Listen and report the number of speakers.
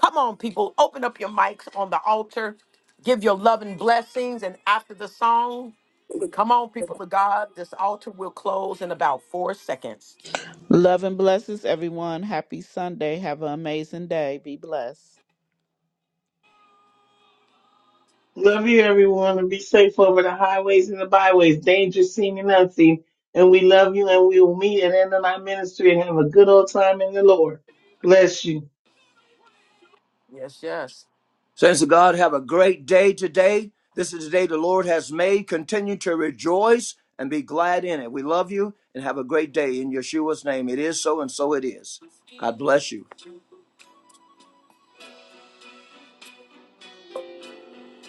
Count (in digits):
4